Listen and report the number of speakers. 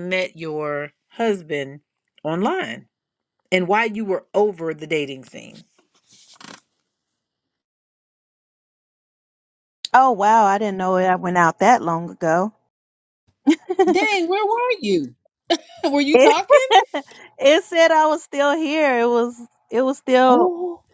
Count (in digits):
2